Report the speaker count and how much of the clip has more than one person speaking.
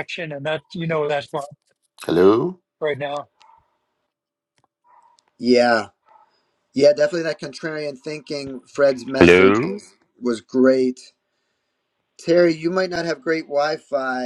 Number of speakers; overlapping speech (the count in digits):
3, about 4%